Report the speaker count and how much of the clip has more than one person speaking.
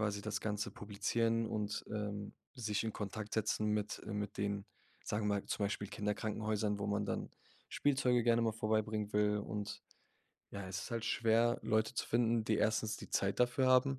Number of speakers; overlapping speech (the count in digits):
1, no overlap